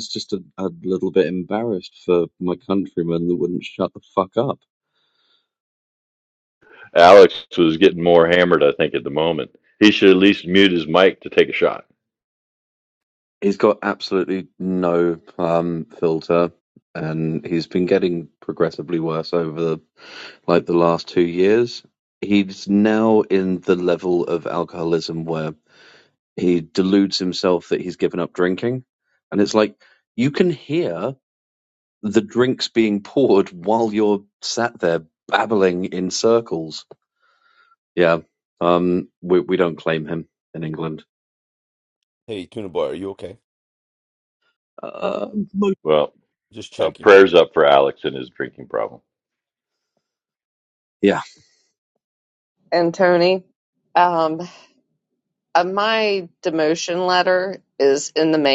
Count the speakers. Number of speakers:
four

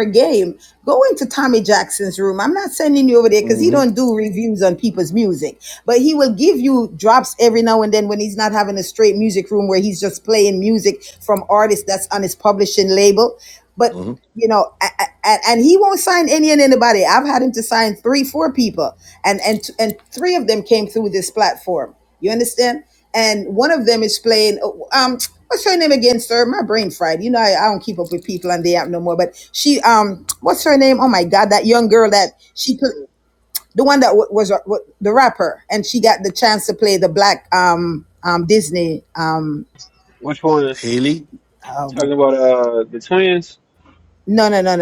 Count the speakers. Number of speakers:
three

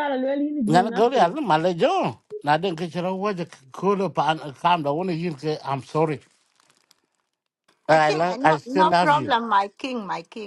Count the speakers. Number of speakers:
three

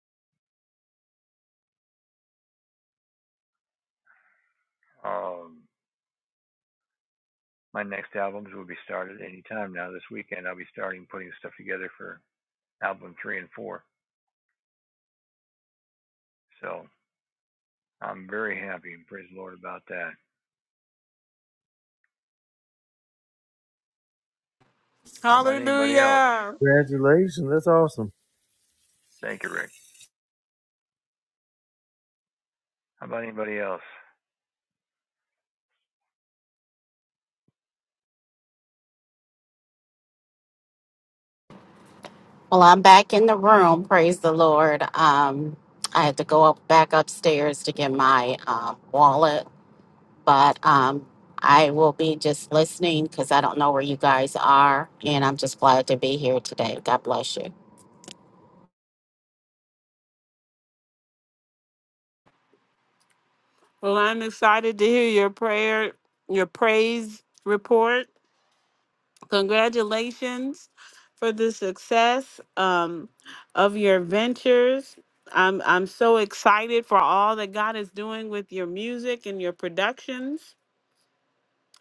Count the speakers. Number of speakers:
four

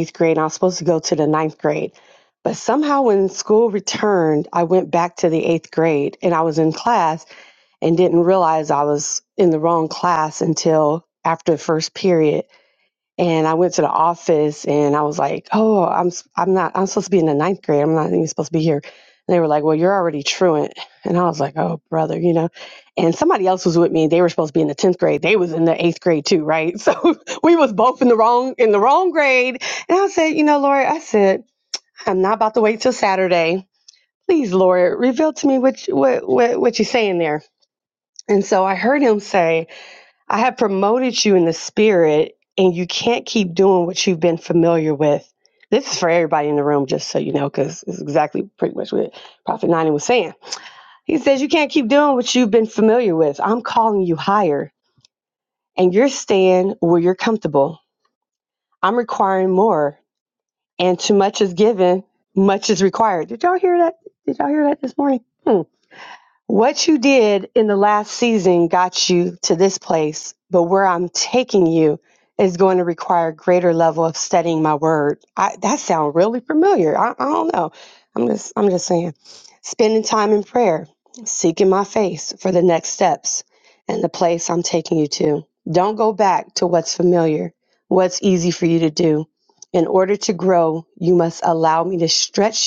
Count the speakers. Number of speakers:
one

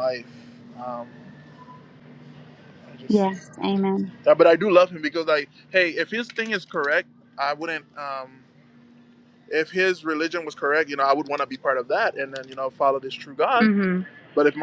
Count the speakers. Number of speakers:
two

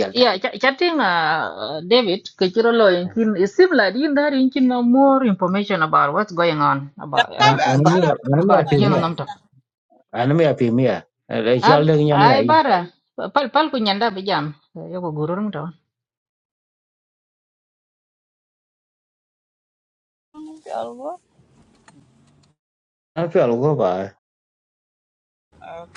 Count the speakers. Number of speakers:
three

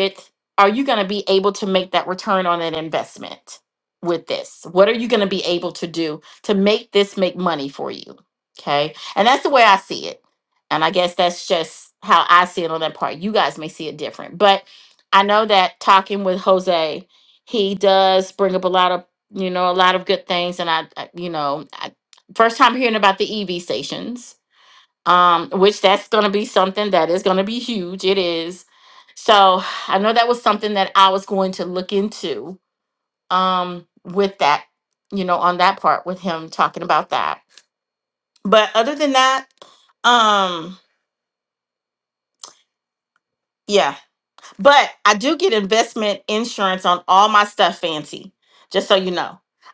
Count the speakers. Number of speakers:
one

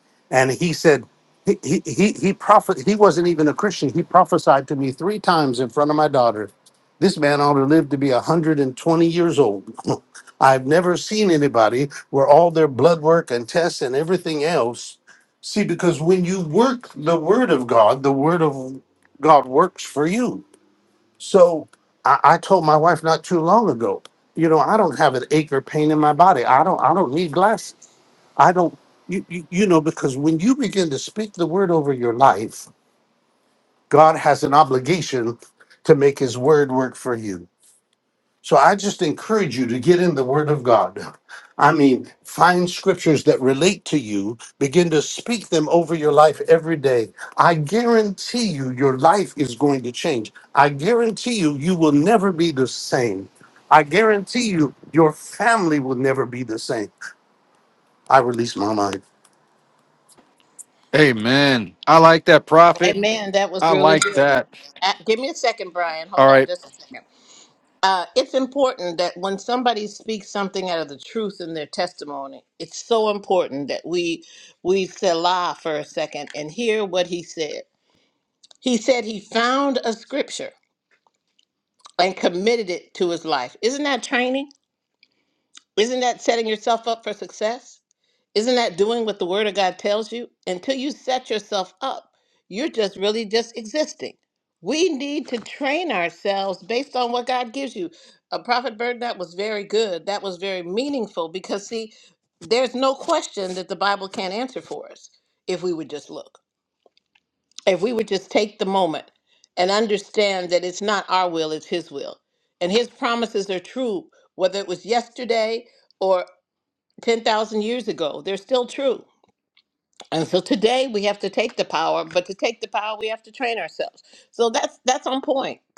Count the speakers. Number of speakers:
three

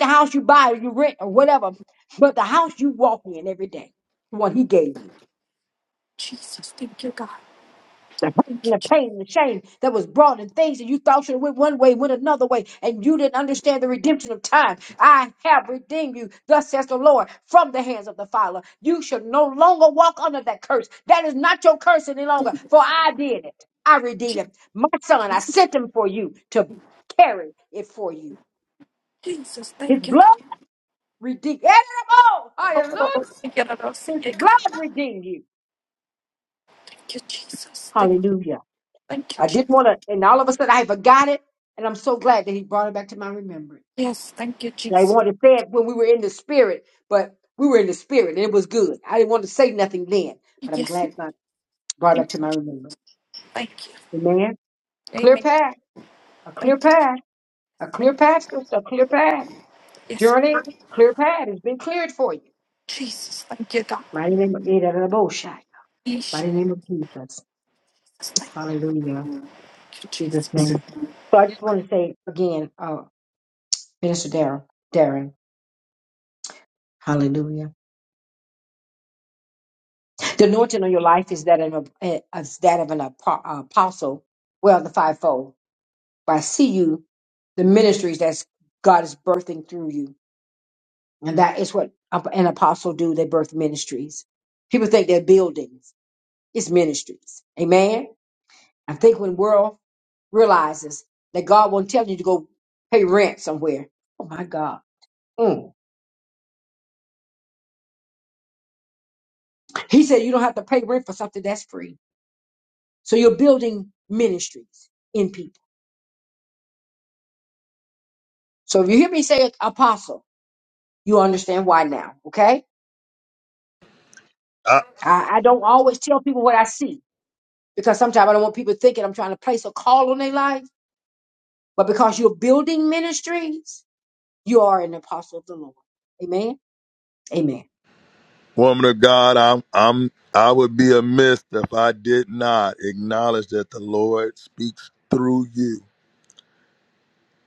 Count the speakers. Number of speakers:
three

